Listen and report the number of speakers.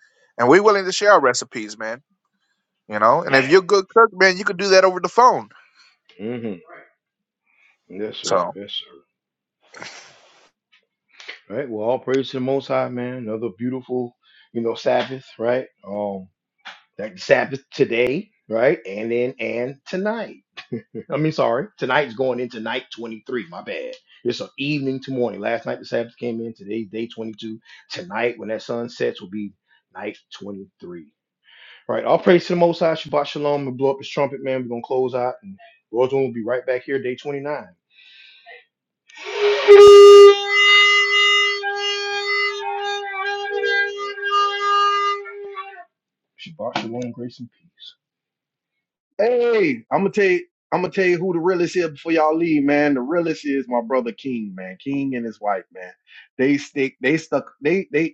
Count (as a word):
three